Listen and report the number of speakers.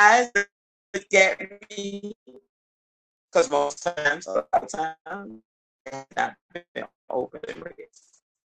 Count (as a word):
one